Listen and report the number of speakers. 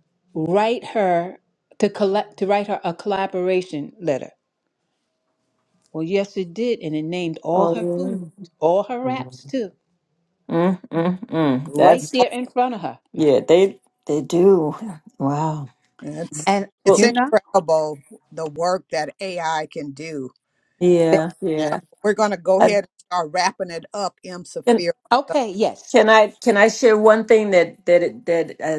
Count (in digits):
3